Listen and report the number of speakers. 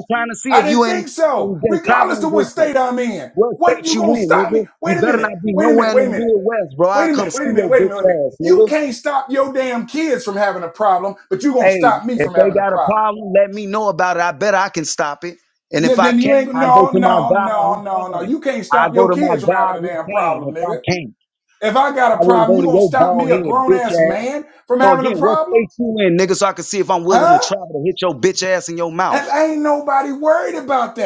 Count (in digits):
2